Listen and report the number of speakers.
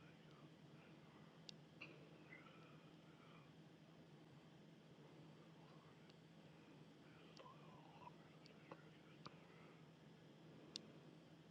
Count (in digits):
0